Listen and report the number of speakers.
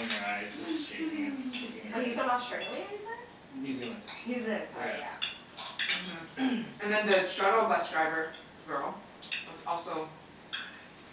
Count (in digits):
3